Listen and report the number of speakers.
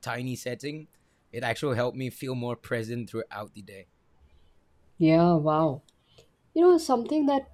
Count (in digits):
2